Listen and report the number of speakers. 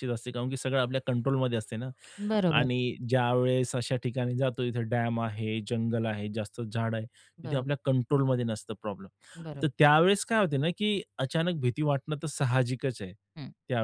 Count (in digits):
2